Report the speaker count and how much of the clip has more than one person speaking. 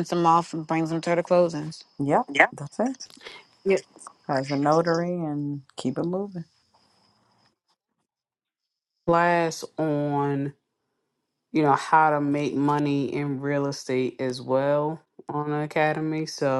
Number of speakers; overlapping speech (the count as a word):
three, no overlap